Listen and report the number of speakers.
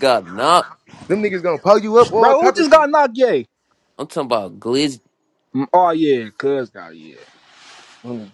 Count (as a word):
three